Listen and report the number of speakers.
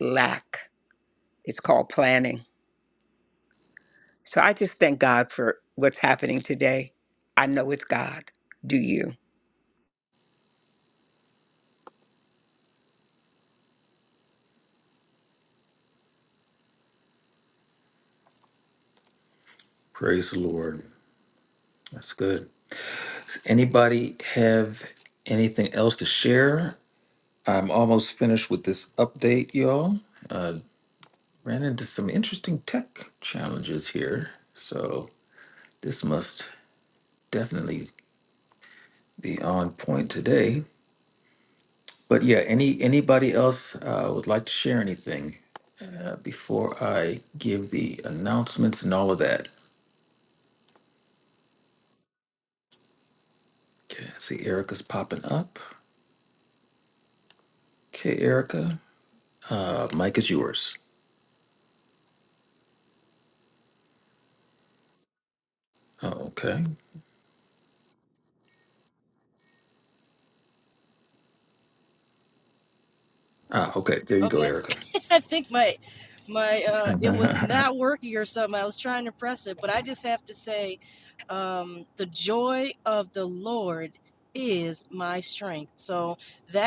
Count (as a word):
three